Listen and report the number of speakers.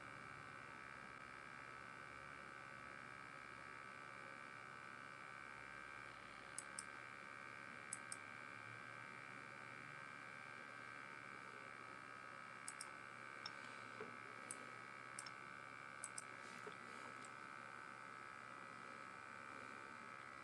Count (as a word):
zero